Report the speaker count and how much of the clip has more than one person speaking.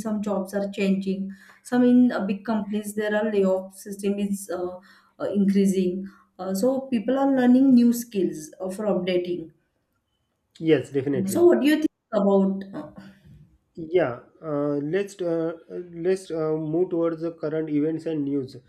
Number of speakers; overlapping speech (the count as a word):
two, about 1%